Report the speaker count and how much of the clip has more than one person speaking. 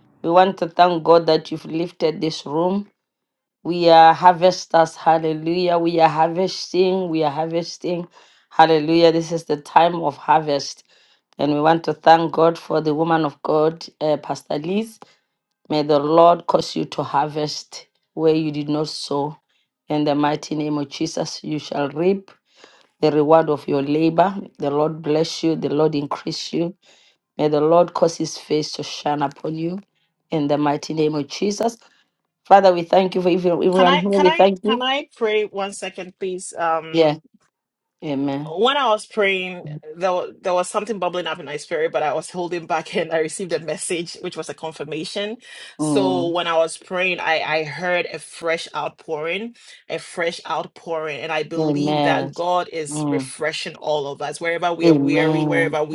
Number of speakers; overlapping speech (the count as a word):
two, about 7%